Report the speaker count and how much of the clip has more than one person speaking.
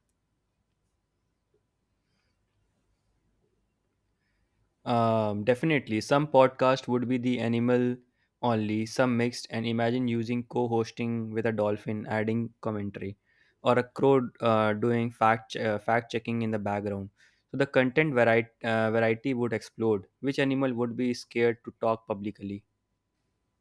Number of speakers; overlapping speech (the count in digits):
1, no overlap